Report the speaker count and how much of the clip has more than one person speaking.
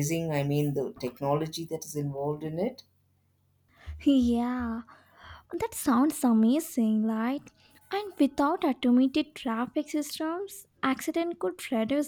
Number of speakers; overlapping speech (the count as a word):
two, no overlap